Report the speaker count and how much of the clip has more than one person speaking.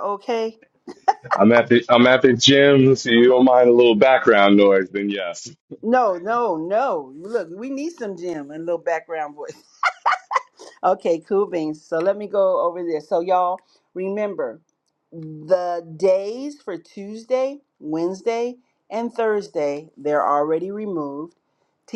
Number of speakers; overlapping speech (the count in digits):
2, no overlap